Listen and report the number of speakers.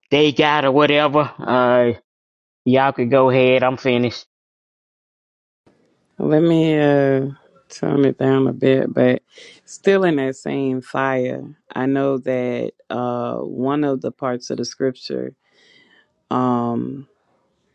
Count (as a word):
two